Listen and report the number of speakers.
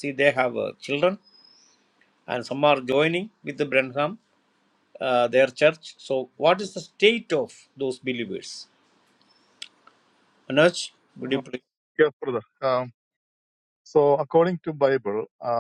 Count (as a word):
two